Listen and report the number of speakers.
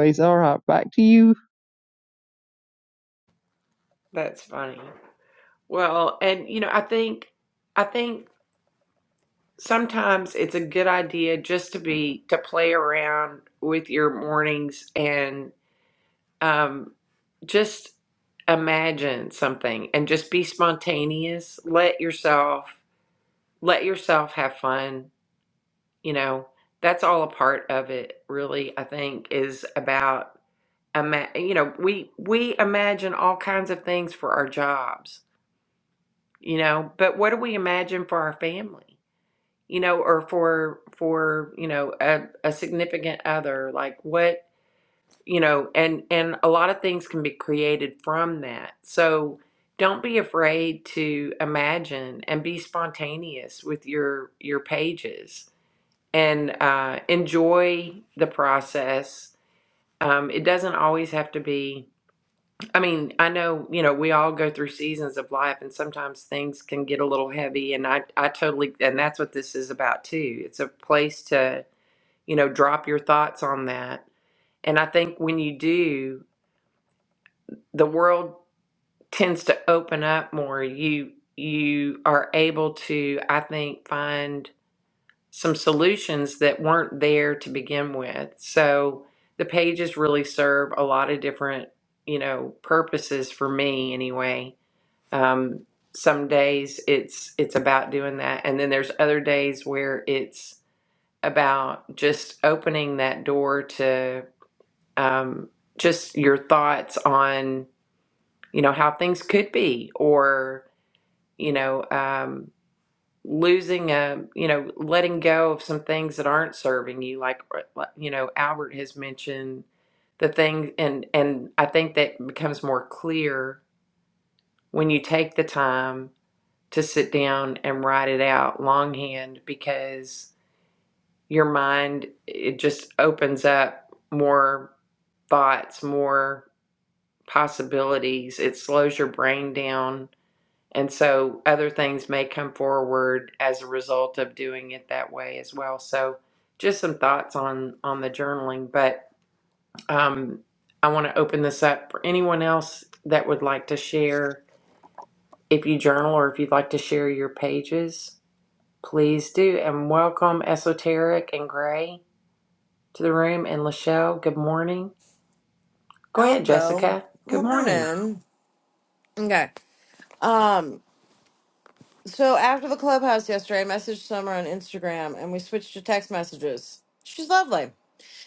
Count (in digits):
3